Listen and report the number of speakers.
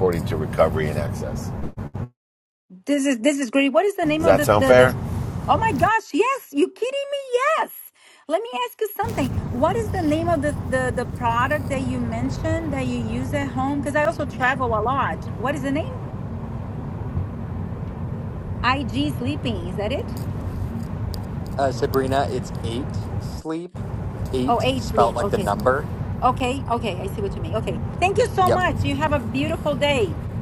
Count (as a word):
three